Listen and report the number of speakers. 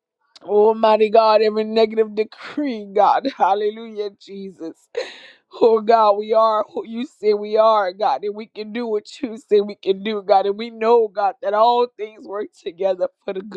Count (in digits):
1